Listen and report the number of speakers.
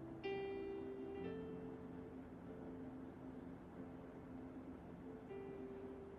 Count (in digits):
0